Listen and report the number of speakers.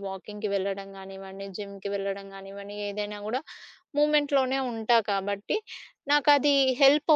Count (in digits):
1